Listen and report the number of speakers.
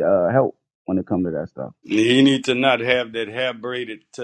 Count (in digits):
2